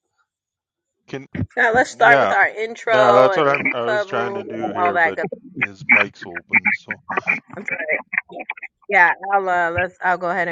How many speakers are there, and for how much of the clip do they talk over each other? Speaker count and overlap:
2, about 26%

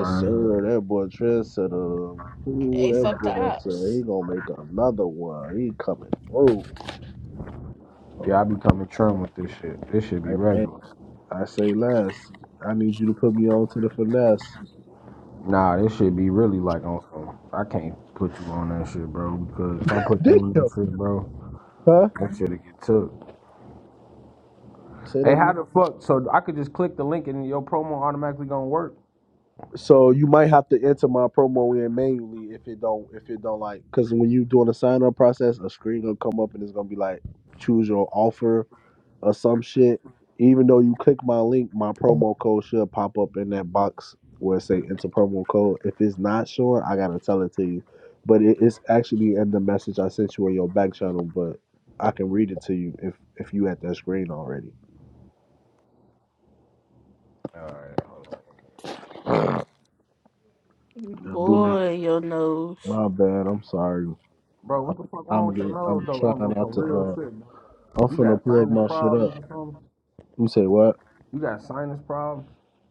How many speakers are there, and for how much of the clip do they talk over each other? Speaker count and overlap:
3, about 9%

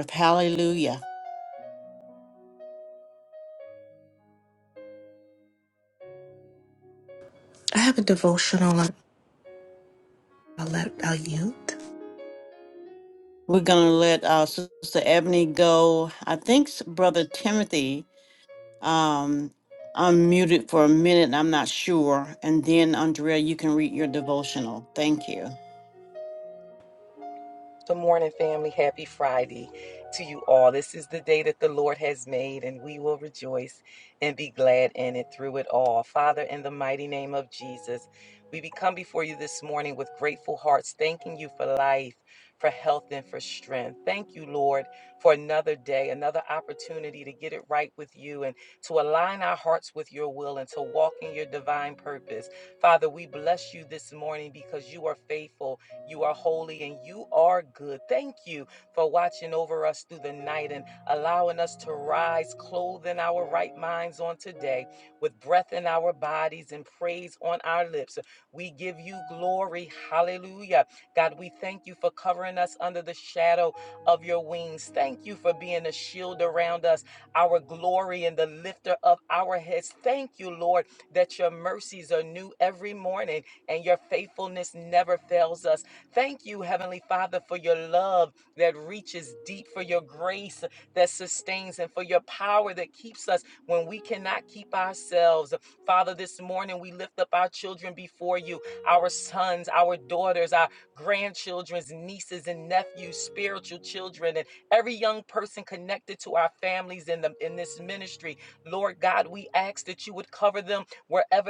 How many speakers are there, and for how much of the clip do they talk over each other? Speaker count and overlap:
3, no overlap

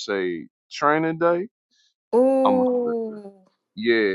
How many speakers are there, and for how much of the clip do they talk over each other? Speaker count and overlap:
2, about 12%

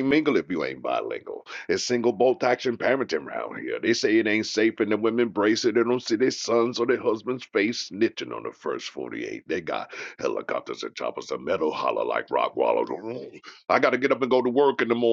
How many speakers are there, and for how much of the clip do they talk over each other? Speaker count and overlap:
1, no overlap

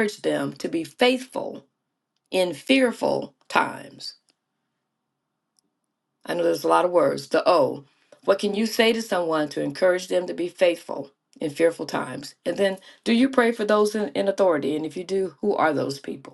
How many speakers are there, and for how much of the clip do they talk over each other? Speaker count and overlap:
1, no overlap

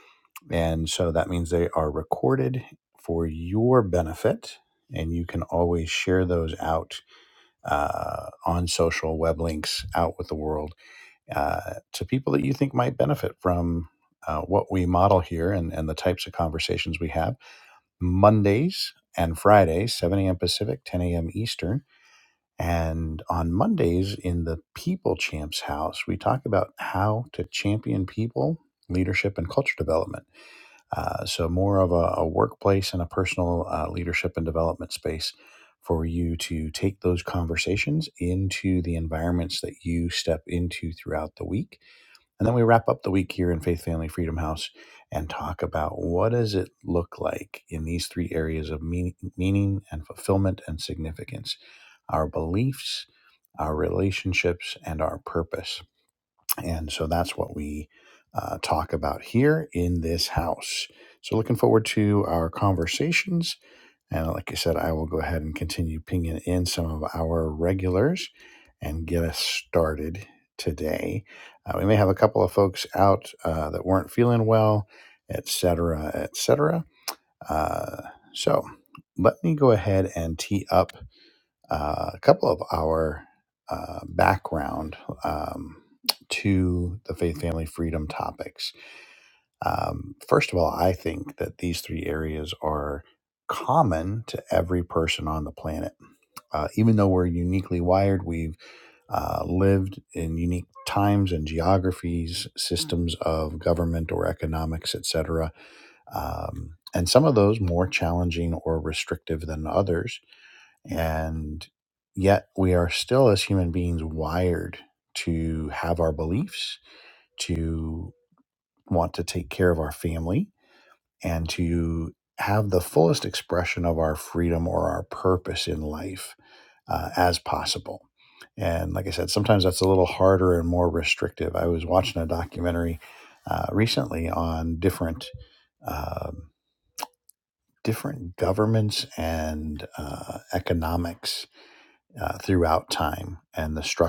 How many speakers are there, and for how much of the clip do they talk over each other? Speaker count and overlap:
1, no overlap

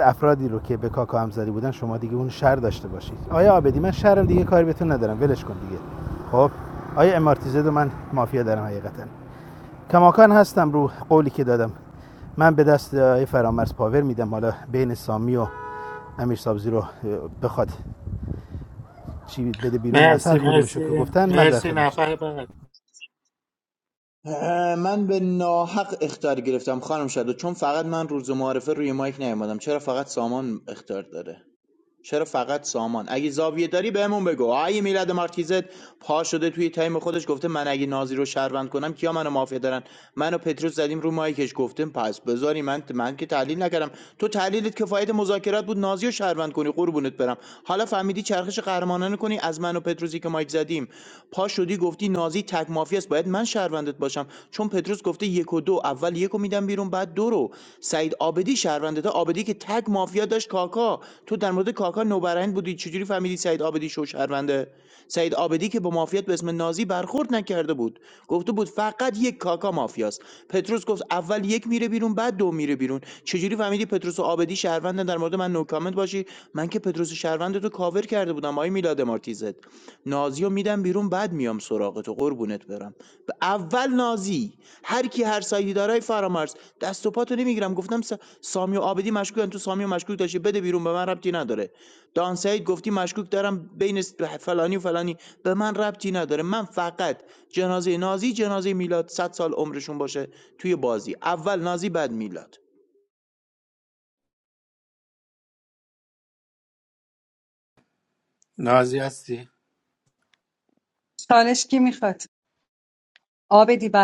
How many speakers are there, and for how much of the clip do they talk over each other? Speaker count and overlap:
4, about 2%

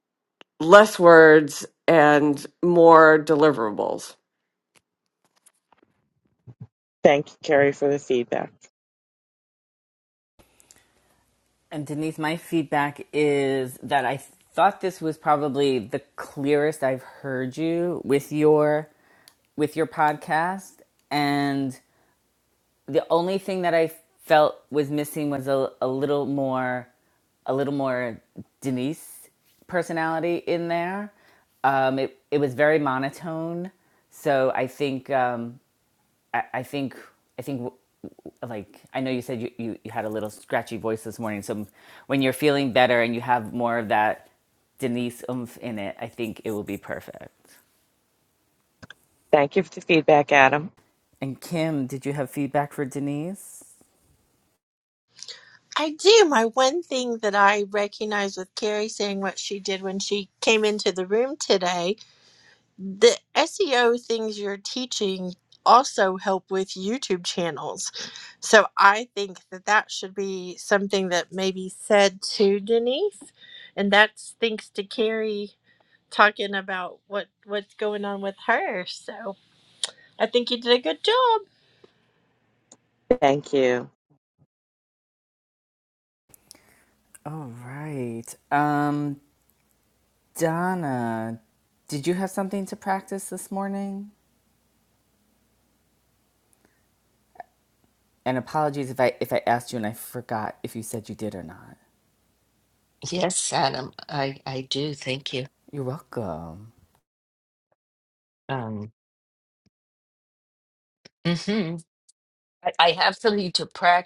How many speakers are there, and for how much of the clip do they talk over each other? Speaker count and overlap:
5, no overlap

